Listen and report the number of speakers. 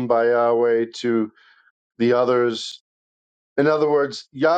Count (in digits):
1